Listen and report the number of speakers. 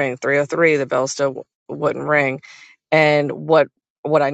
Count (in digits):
1